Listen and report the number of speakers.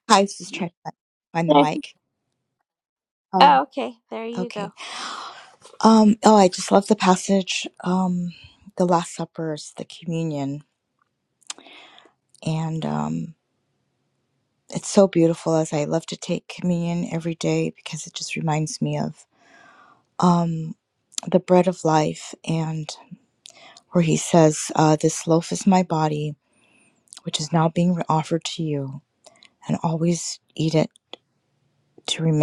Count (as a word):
two